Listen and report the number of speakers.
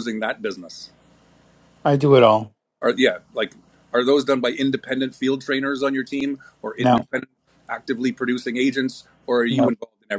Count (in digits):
2